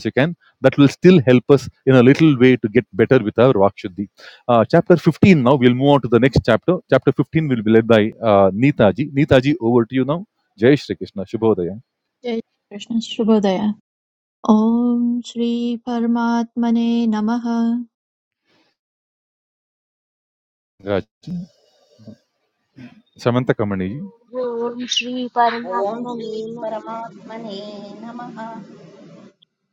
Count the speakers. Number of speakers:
four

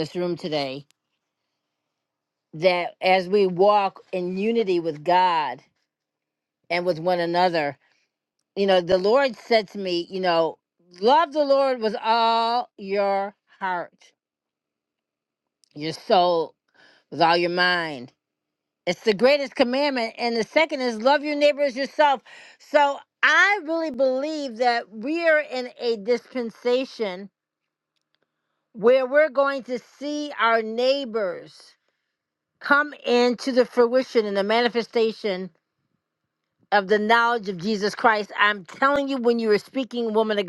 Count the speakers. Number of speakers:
one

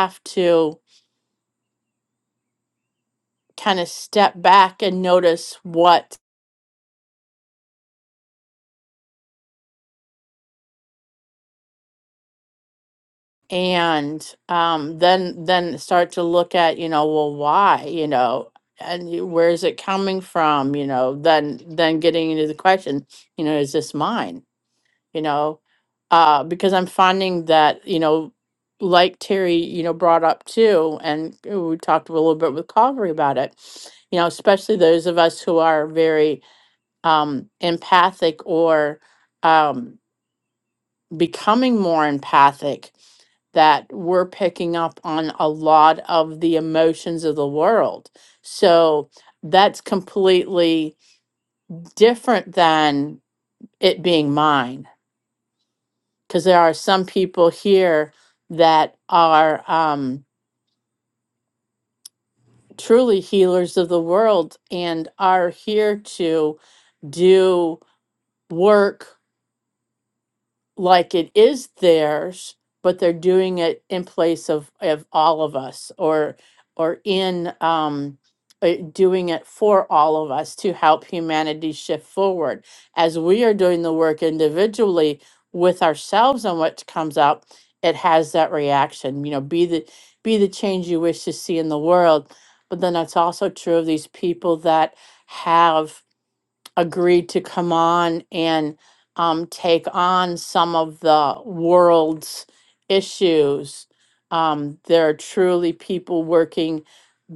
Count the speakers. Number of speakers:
one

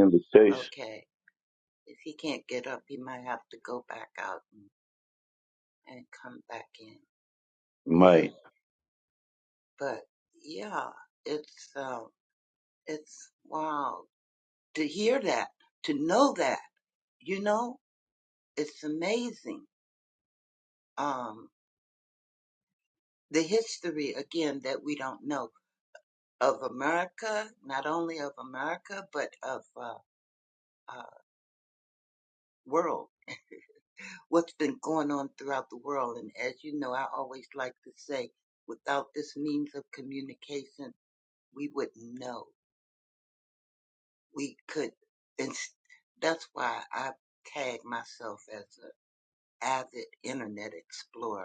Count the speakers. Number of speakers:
two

